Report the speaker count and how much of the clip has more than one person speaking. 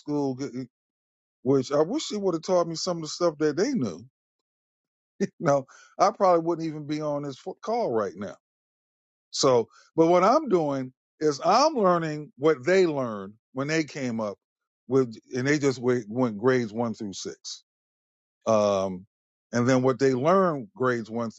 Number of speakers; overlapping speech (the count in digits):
1, no overlap